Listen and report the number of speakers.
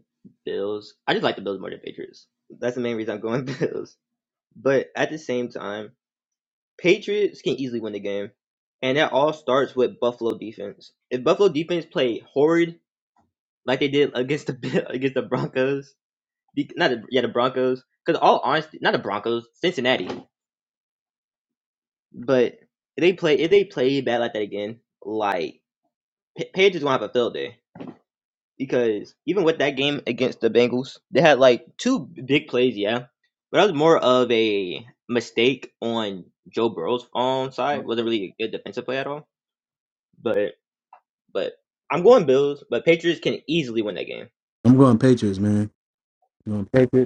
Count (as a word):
two